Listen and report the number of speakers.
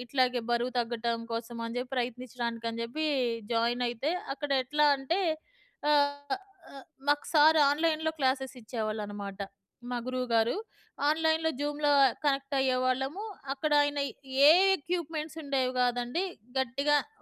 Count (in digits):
1